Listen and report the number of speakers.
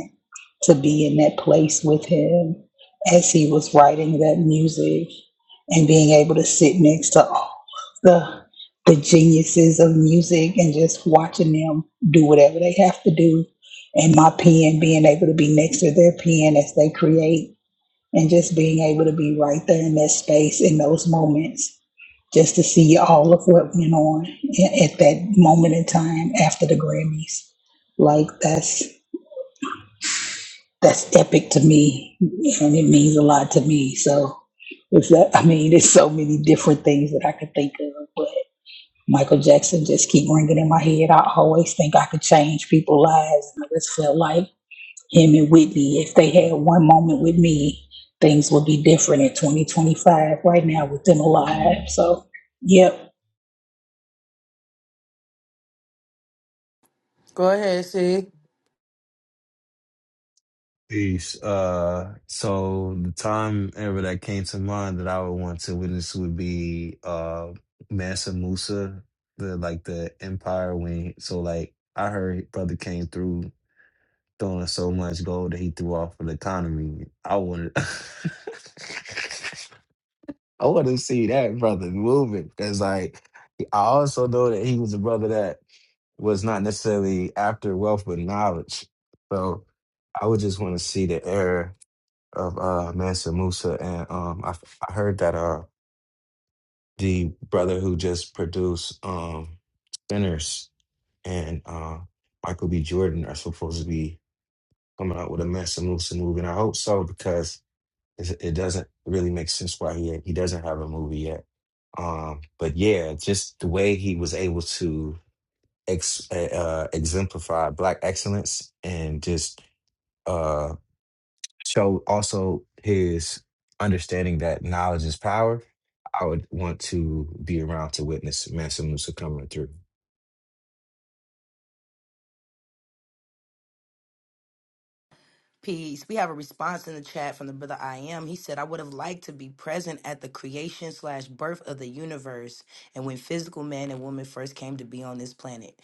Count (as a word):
three